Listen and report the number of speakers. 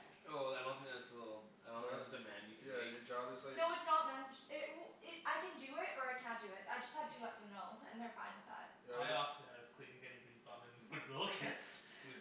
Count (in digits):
4